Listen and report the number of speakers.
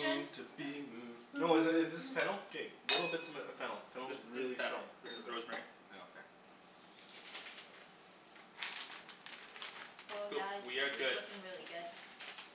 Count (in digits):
4